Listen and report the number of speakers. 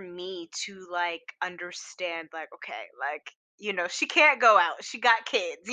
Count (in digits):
1